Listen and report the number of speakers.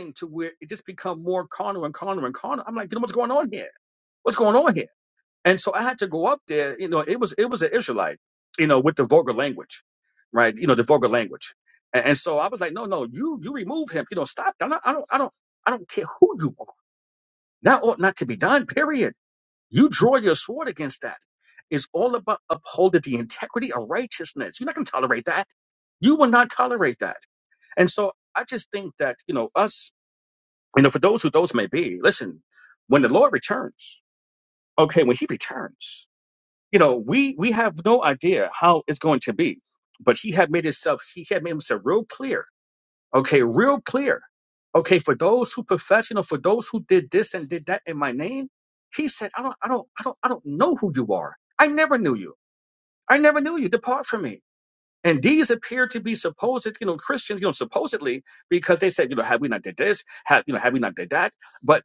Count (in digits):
1